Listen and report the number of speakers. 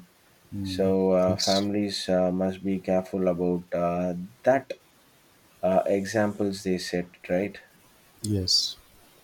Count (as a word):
two